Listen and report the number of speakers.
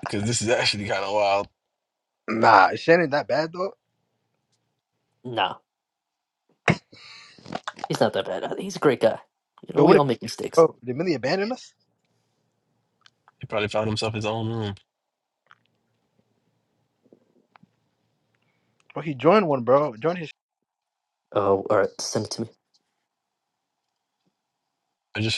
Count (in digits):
3